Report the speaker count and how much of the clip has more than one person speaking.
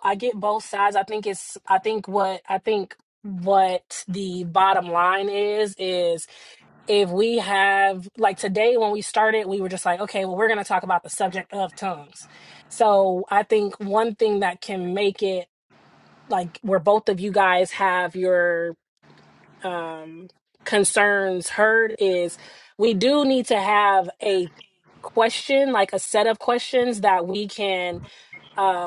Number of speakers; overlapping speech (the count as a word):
one, no overlap